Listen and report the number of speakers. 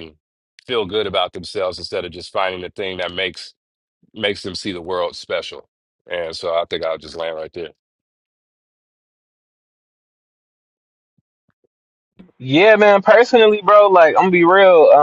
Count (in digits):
2